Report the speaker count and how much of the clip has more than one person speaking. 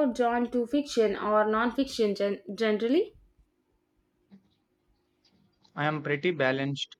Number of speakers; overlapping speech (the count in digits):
2, no overlap